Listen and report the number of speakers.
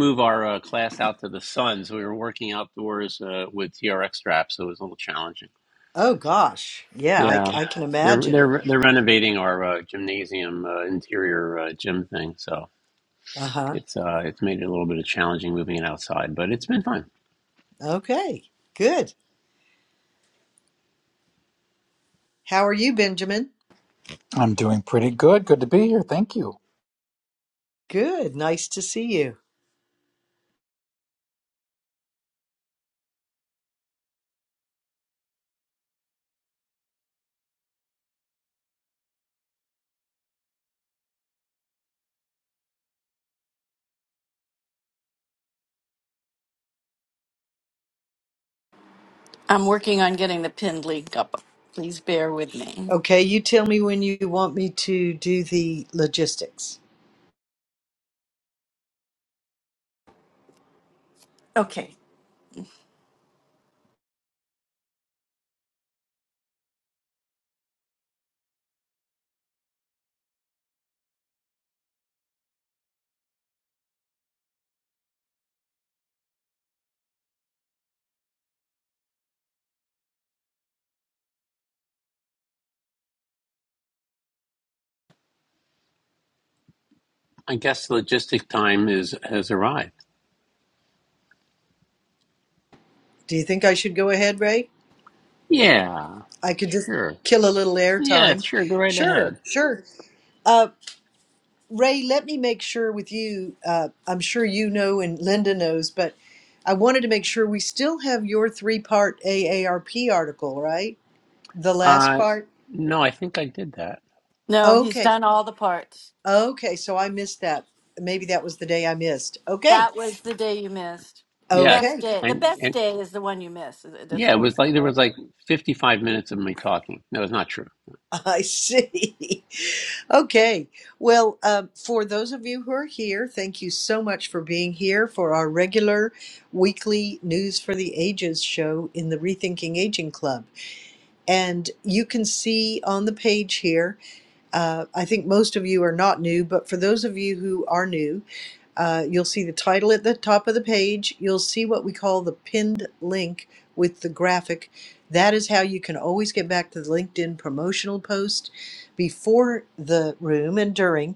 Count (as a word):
four